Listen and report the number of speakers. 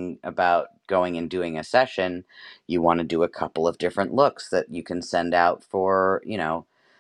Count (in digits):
1